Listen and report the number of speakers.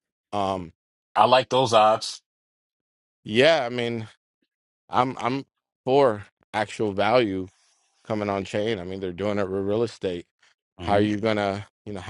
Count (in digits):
2